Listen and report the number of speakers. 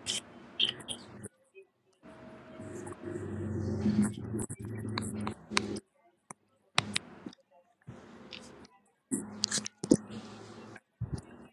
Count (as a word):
zero